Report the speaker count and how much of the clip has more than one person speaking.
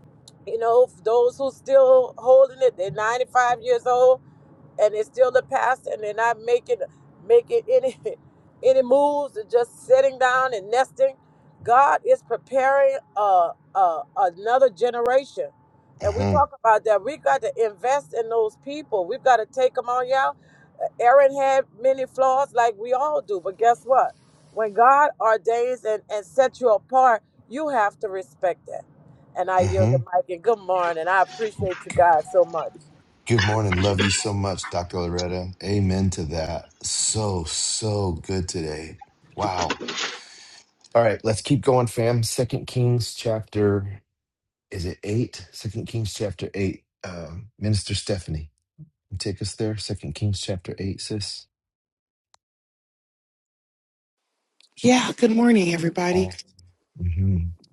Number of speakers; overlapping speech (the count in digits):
3, about 2%